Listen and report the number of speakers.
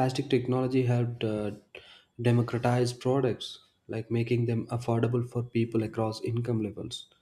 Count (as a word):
one